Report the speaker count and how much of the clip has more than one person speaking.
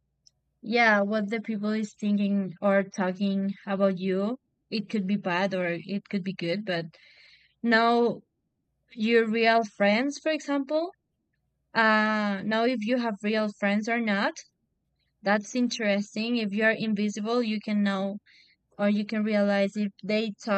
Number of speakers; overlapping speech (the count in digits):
1, no overlap